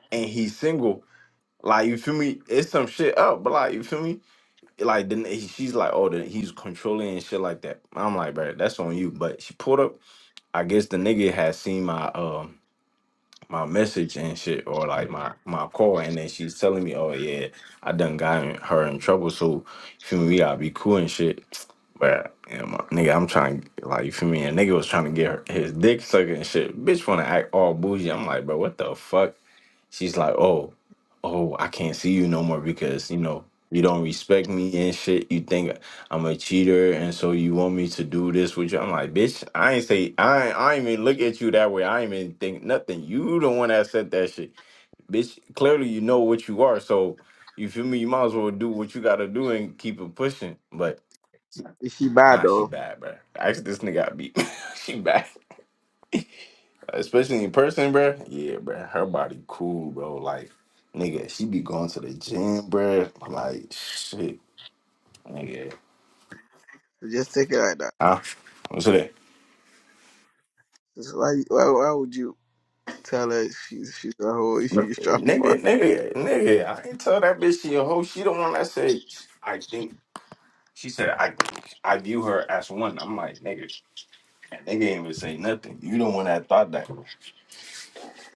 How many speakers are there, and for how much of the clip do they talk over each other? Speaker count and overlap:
2, about 1%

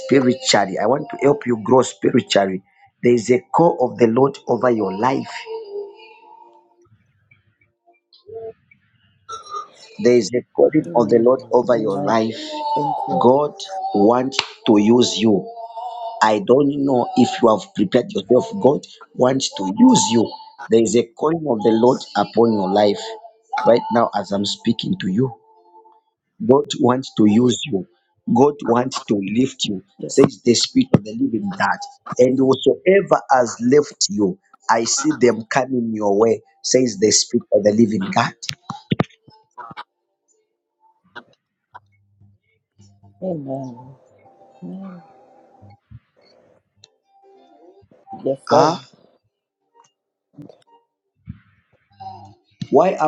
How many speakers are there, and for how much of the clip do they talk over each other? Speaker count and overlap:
2, about 4%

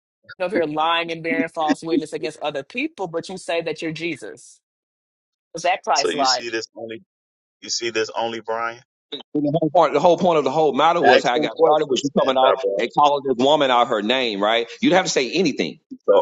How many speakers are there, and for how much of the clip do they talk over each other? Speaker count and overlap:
3, about 15%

